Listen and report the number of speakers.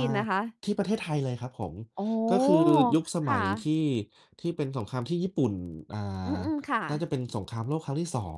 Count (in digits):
2